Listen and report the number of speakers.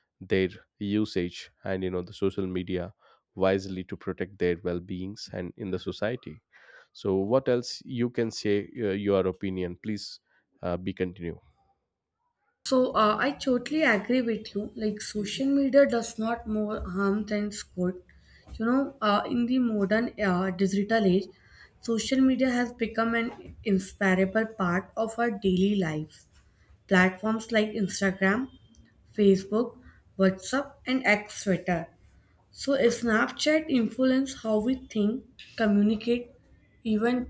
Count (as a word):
two